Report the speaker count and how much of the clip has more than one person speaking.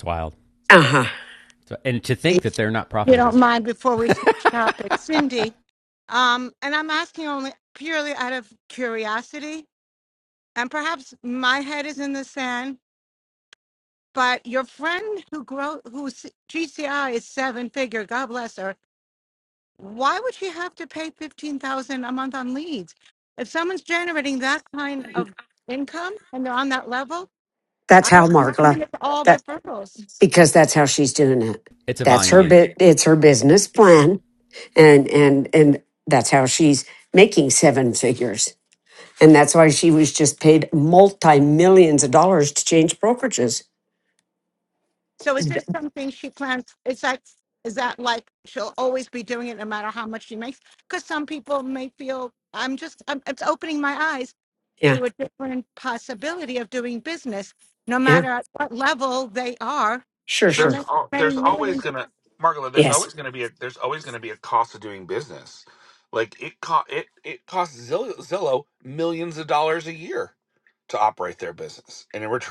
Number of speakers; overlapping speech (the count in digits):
4, about 5%